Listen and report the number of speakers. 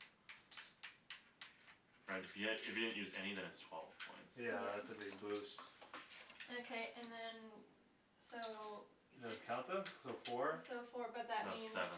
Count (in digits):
3